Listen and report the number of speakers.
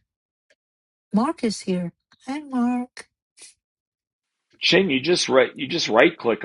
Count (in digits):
2